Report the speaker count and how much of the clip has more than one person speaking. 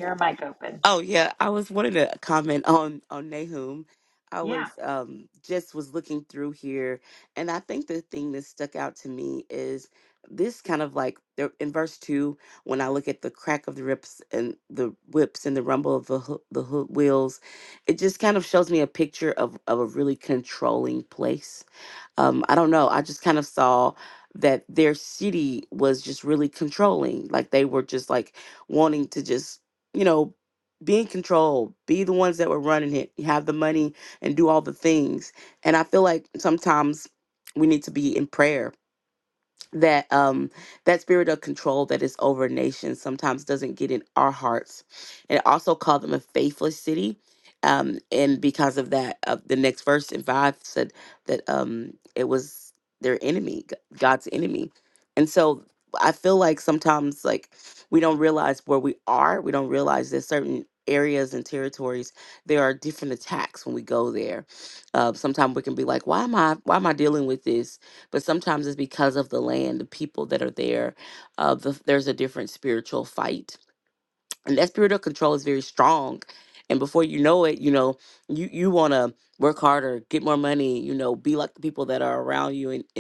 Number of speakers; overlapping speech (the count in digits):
2, under 1%